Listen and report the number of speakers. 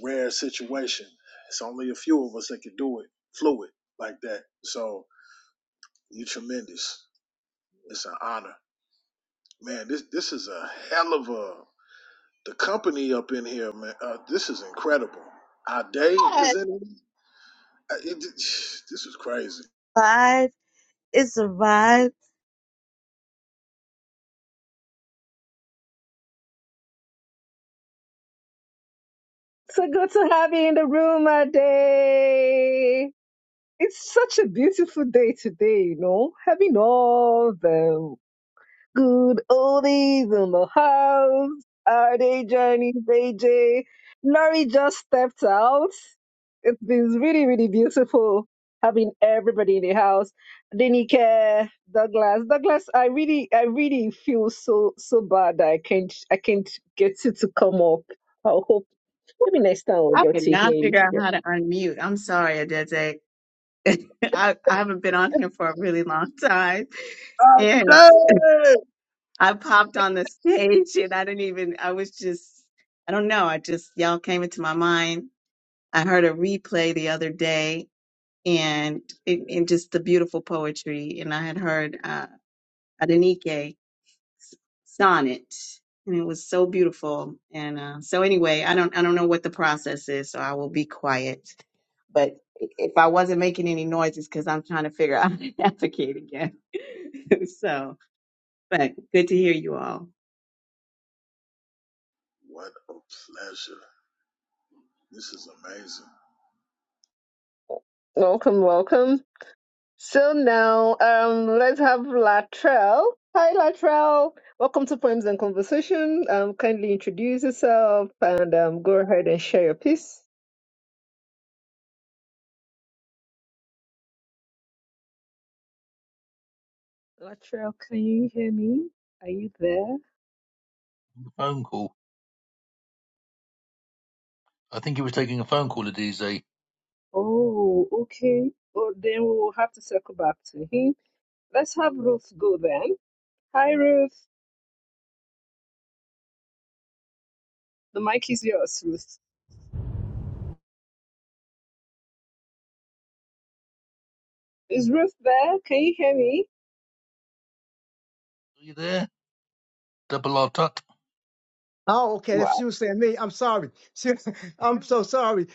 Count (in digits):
6